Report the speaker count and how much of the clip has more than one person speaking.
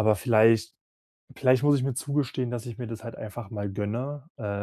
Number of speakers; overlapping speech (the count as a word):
one, no overlap